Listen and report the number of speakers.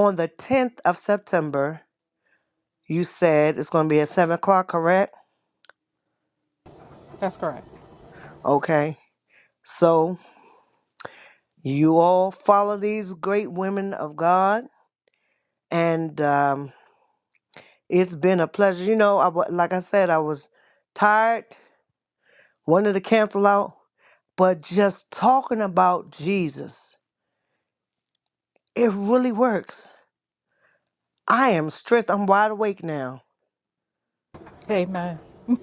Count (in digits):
2